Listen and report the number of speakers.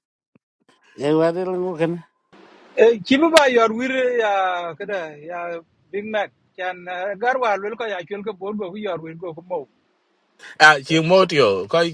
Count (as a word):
three